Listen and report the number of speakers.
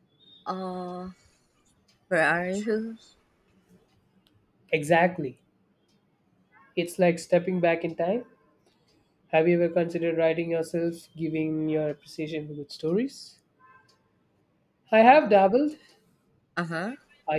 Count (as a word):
two